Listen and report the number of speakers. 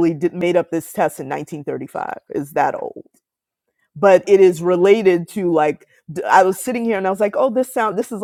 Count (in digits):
1